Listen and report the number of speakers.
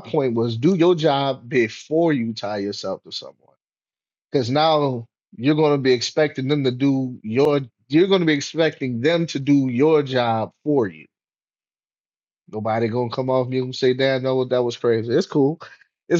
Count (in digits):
1